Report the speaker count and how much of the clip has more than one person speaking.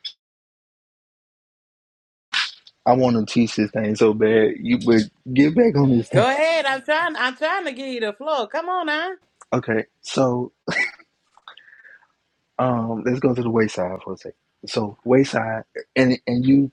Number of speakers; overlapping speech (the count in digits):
2, about 1%